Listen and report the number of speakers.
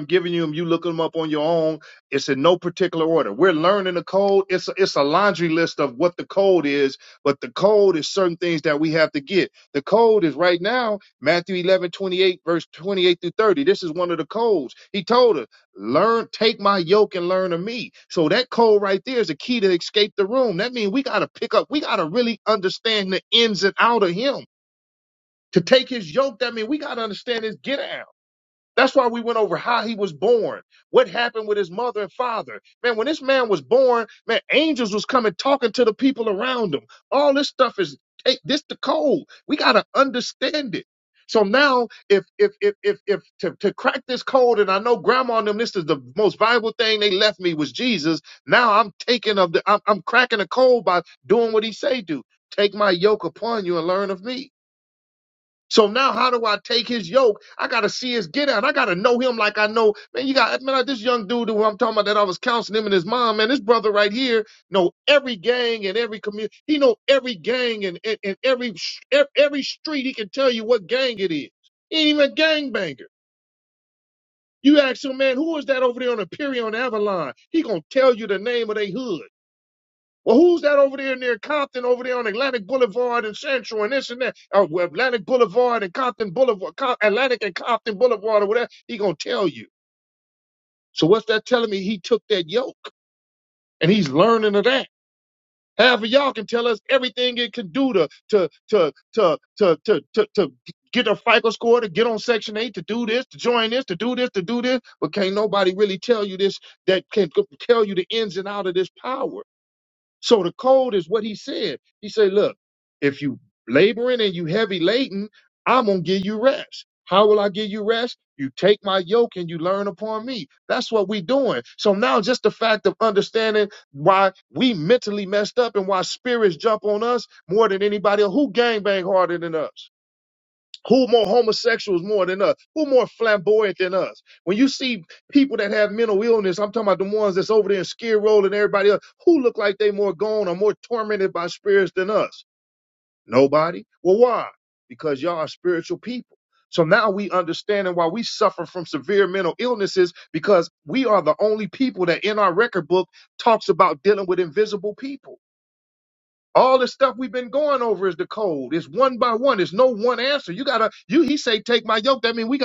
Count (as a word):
one